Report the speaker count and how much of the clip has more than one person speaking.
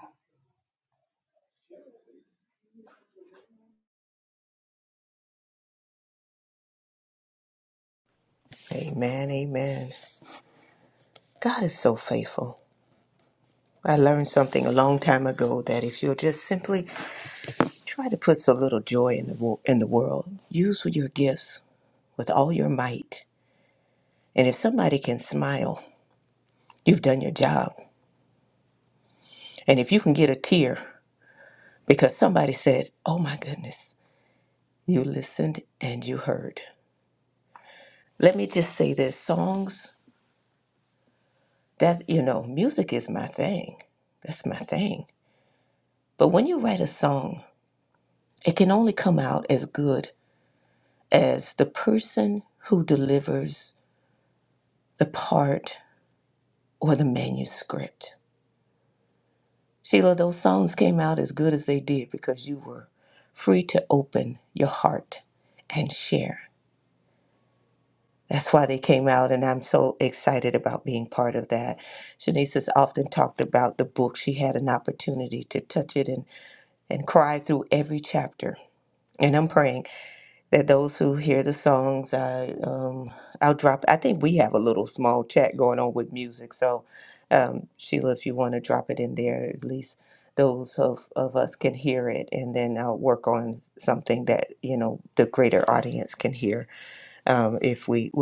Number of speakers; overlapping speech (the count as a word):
one, no overlap